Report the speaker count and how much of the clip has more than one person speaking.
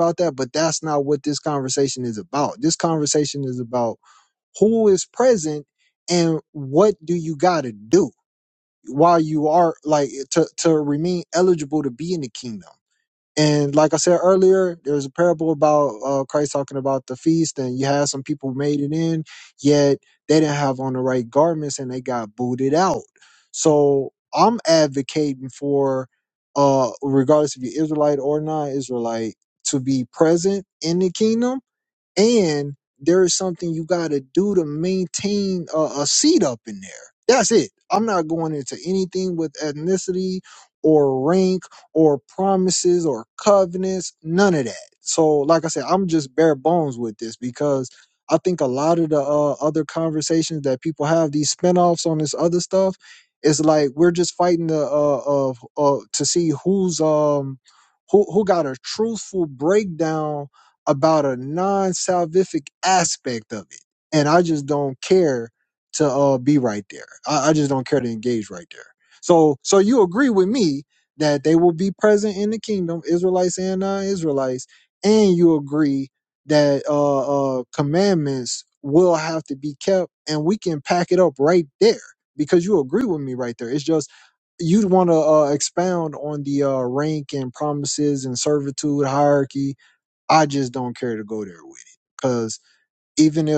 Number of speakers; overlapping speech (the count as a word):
one, no overlap